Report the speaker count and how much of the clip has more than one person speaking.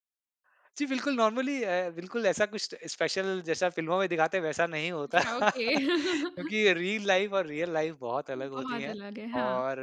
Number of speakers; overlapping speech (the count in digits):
2, about 8%